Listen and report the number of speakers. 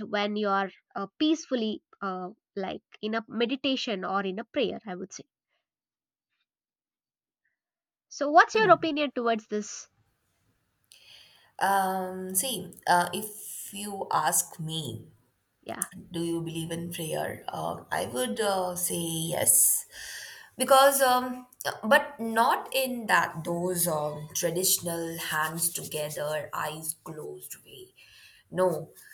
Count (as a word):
two